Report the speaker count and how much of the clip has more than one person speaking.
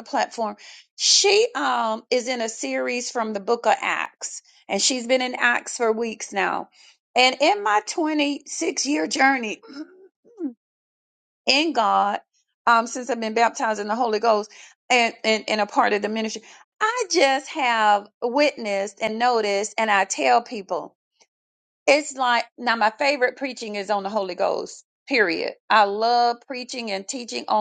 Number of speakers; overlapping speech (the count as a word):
one, no overlap